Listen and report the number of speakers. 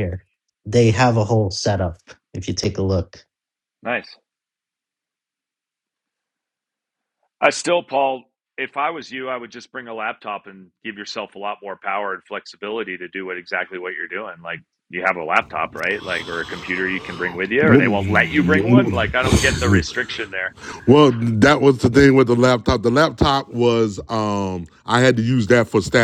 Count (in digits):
3